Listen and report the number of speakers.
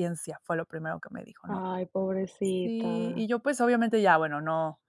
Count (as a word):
two